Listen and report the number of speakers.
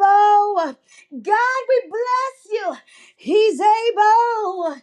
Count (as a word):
one